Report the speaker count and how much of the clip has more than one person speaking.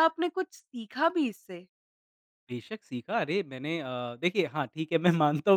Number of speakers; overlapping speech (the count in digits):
2, no overlap